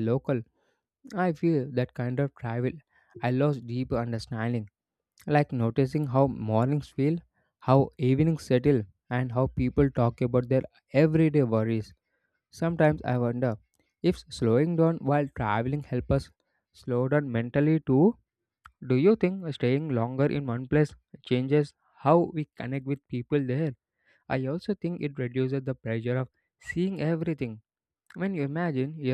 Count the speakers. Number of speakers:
1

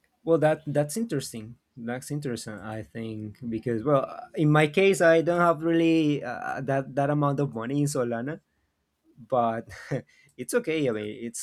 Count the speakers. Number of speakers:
1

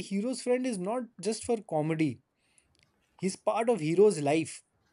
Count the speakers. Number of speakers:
1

